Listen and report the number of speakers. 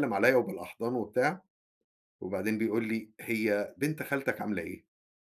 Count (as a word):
one